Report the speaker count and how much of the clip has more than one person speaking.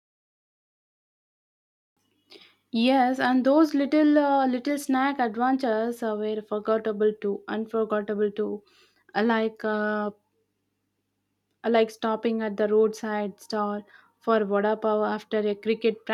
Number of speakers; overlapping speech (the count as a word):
one, no overlap